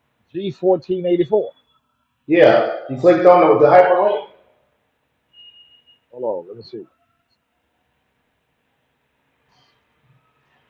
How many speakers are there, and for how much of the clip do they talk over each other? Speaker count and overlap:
2, no overlap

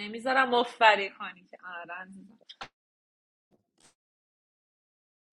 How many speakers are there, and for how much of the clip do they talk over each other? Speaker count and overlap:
1, no overlap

